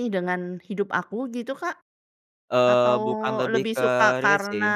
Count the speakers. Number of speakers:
two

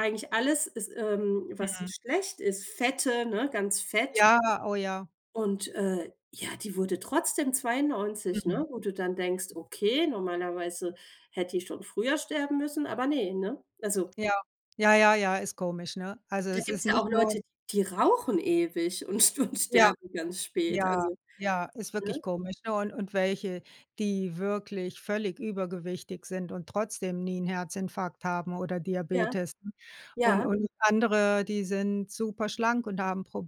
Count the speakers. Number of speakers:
two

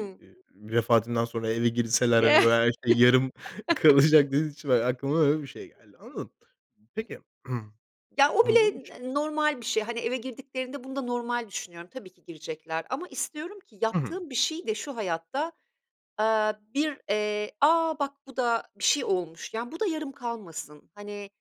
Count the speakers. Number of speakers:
two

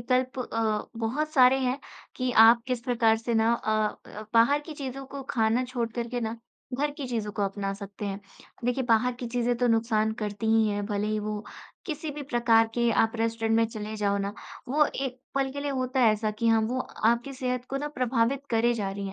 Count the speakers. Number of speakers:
one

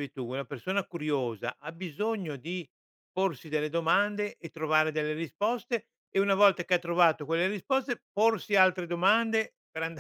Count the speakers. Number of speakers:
one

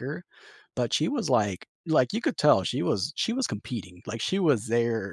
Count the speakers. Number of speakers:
one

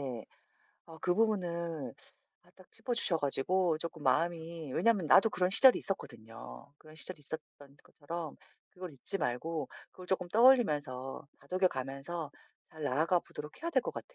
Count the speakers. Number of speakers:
one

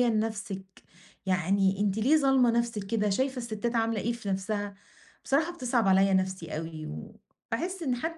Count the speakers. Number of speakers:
one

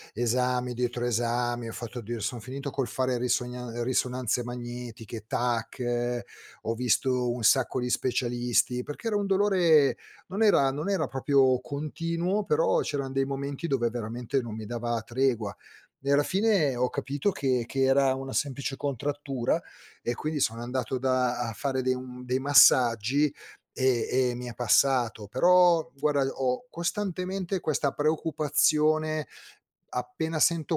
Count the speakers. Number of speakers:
one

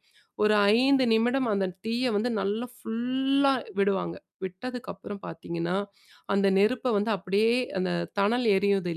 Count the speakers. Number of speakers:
one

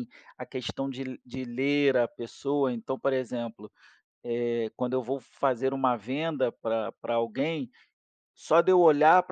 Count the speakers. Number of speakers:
one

